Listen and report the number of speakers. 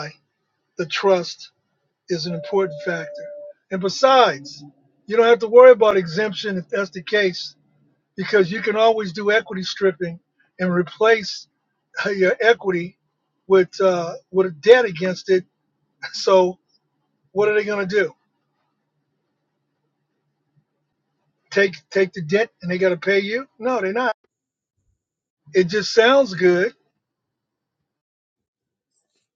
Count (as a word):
one